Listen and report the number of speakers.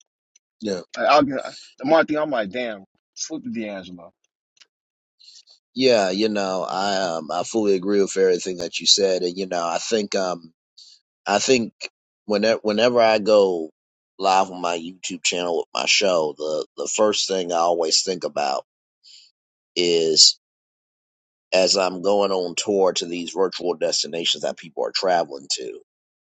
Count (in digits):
2